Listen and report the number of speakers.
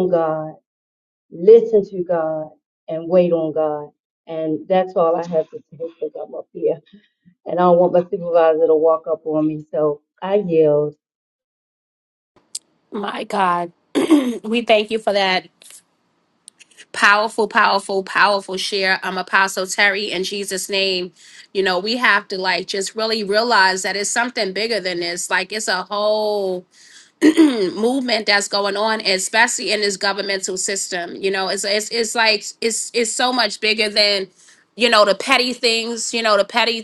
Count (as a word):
two